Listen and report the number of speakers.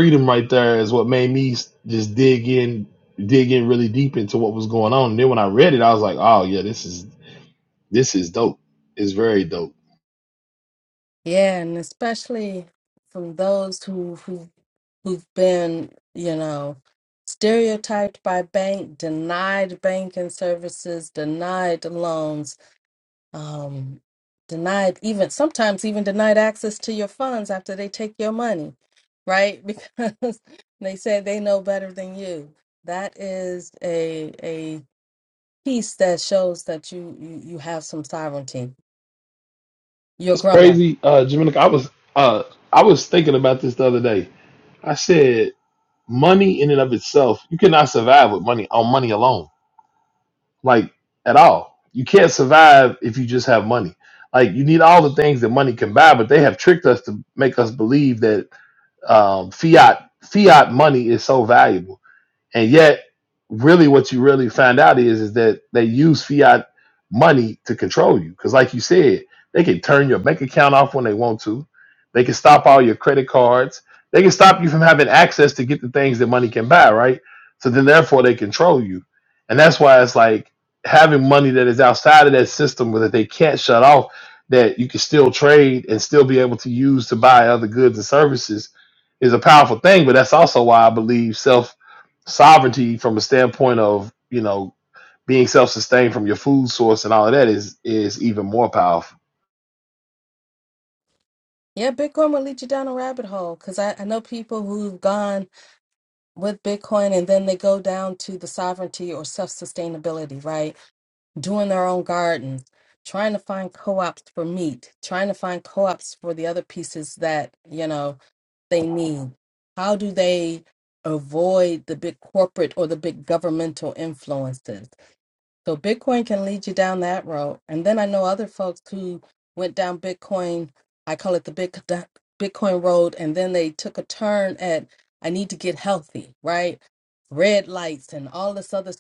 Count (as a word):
two